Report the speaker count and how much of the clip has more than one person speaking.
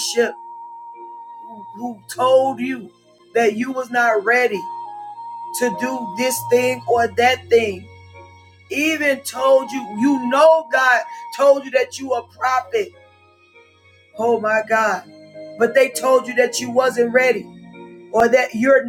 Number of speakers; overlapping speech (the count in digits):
1, no overlap